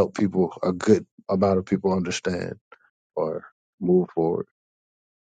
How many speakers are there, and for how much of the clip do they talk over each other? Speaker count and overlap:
1, no overlap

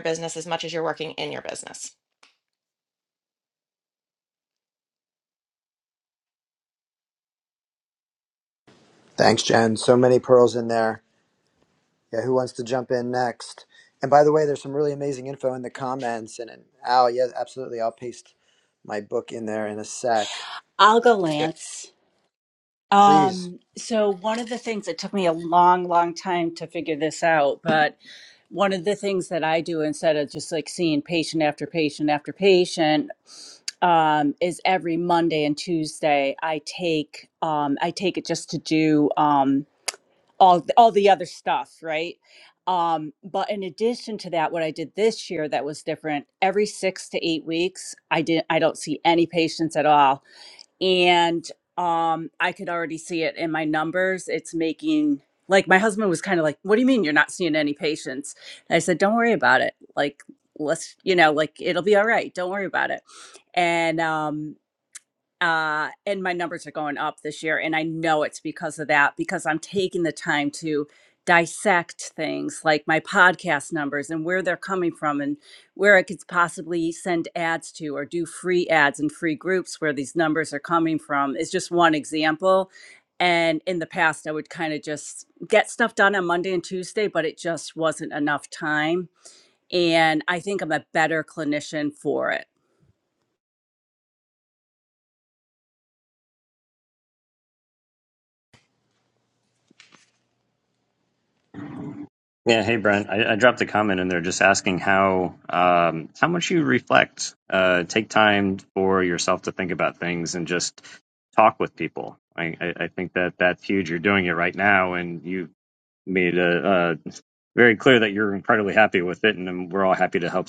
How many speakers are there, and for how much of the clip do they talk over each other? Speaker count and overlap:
4, under 1%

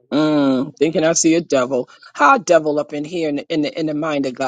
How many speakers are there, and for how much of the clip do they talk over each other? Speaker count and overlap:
1, no overlap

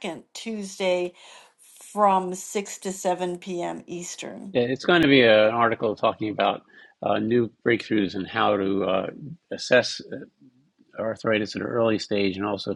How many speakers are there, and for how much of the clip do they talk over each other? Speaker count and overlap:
2, no overlap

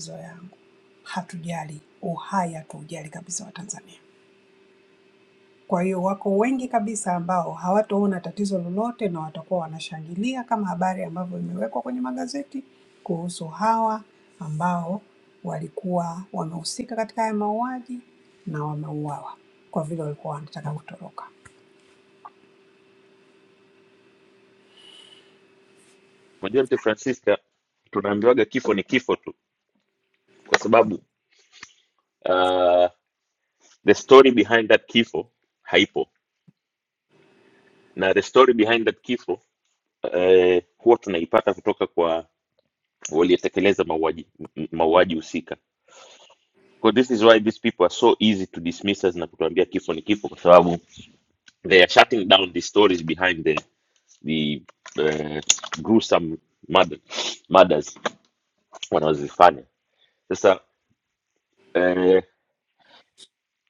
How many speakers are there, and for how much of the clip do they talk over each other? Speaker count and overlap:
2, no overlap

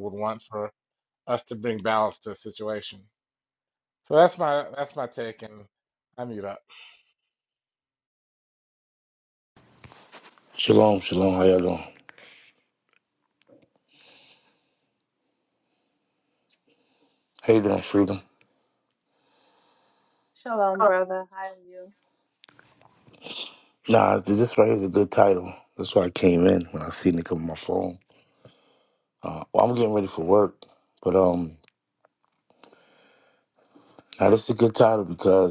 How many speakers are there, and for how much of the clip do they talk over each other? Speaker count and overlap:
3, no overlap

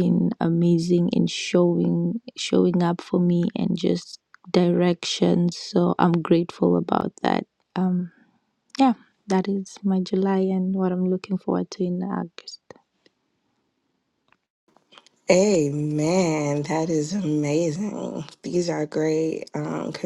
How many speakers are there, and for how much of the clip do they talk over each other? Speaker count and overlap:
2, no overlap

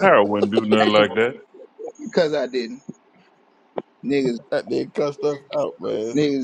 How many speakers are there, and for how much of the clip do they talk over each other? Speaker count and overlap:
3, about 5%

